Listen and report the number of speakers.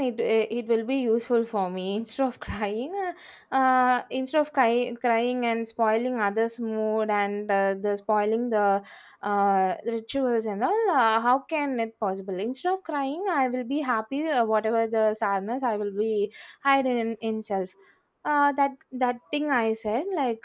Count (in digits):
1